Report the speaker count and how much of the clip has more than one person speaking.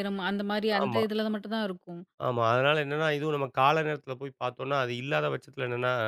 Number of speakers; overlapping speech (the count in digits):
2, about 5%